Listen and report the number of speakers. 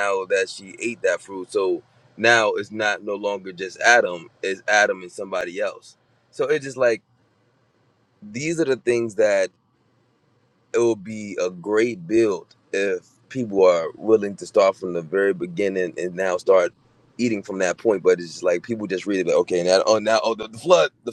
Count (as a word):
one